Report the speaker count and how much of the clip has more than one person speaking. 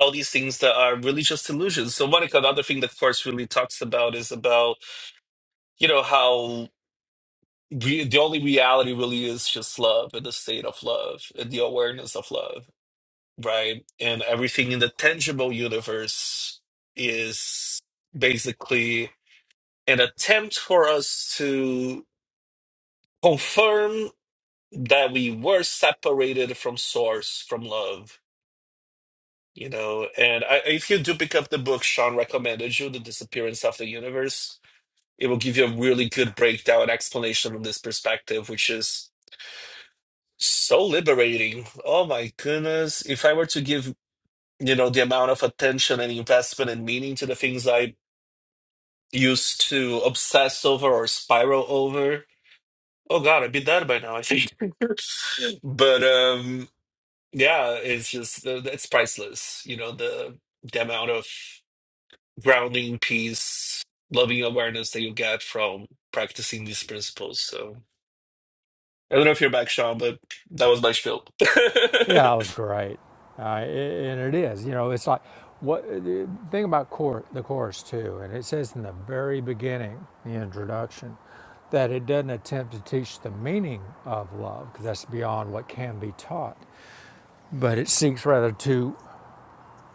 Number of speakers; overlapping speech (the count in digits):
2, no overlap